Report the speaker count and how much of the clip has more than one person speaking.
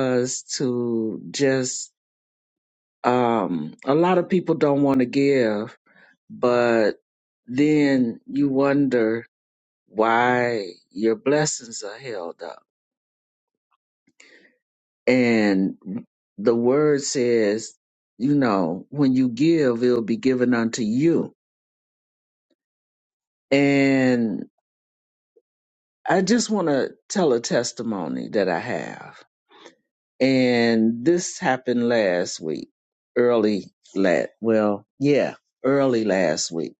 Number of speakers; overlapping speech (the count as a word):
one, no overlap